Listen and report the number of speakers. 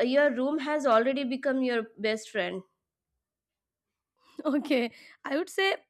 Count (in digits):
2